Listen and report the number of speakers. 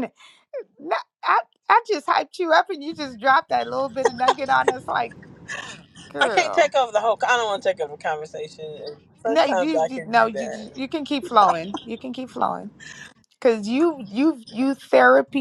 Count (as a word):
two